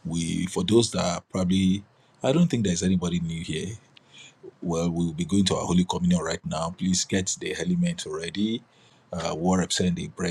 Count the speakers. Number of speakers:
1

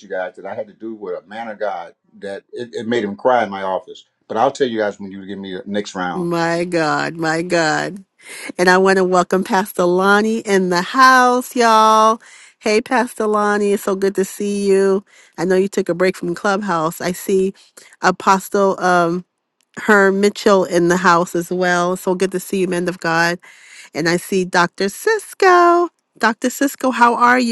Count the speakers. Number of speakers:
2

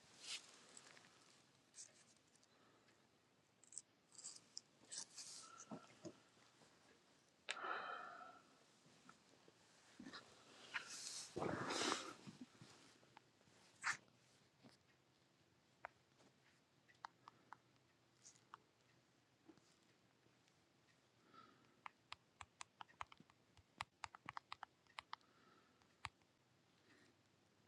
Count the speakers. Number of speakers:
0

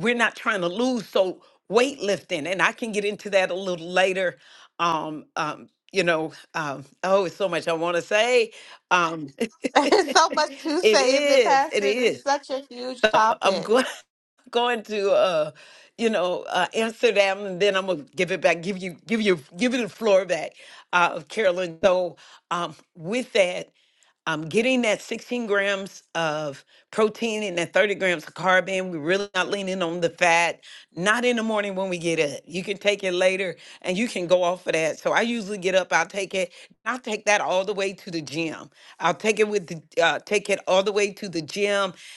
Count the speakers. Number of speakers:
2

